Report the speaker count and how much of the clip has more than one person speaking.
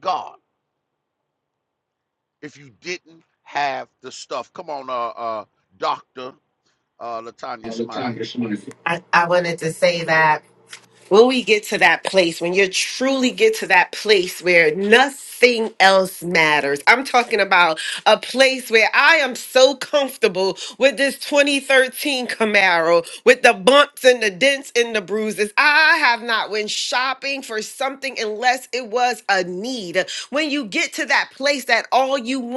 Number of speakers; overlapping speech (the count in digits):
2, no overlap